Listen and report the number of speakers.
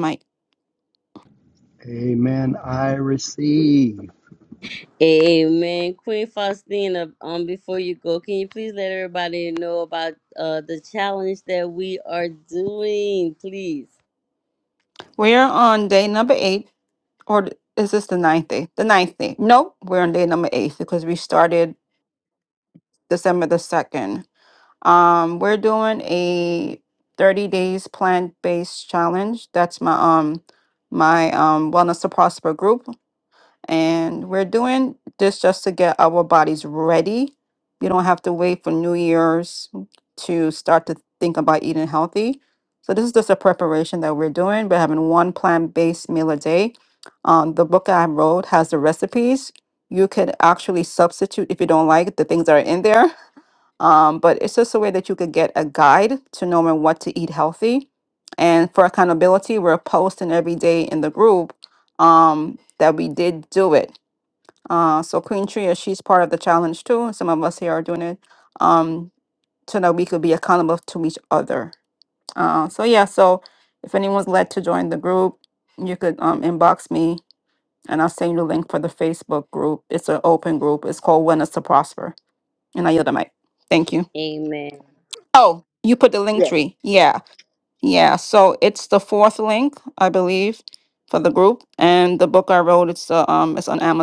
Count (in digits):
3